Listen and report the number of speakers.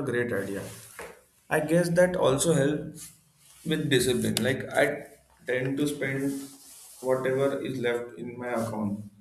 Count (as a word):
one